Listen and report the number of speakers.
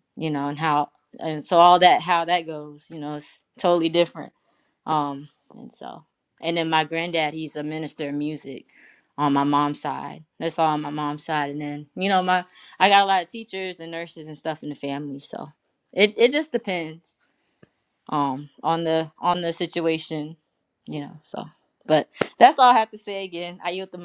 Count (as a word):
one